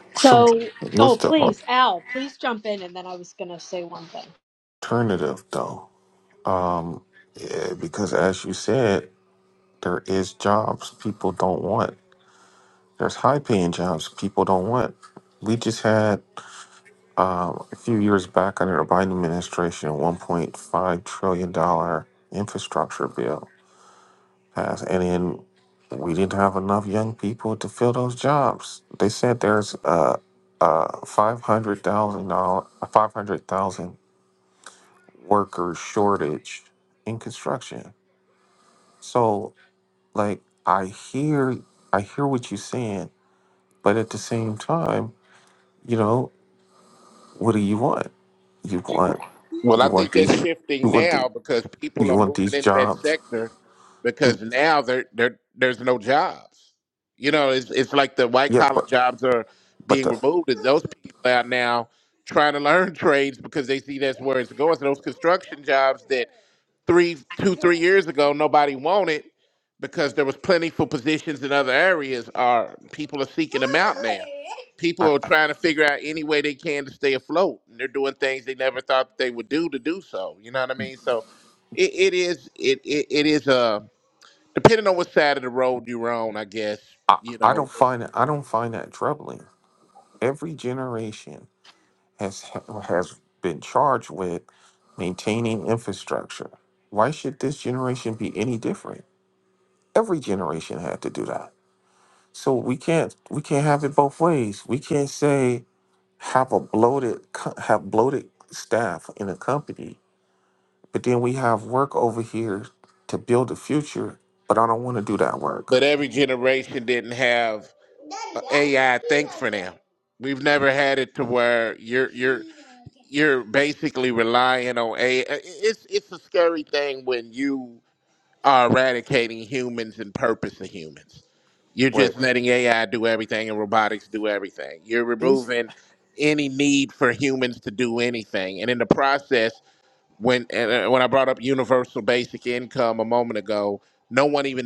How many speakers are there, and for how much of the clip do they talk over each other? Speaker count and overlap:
3, about 3%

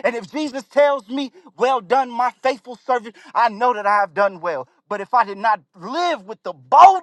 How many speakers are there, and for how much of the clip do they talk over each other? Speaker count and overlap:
1, no overlap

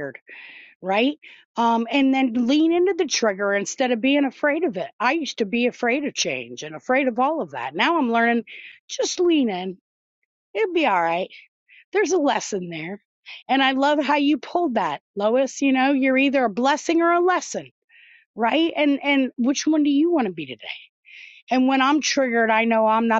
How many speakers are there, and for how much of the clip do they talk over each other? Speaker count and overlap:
1, no overlap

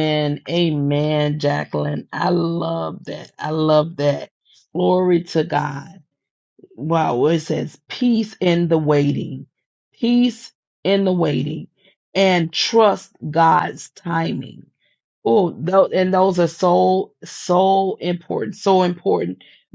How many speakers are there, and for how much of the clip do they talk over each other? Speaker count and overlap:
1, no overlap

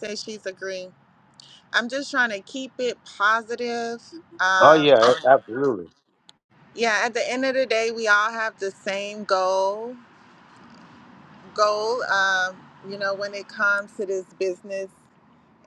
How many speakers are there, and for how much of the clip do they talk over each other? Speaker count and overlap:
2, about 2%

